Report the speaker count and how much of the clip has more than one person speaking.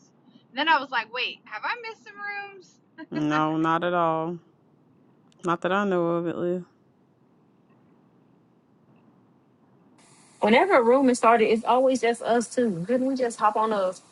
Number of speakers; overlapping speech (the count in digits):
3, no overlap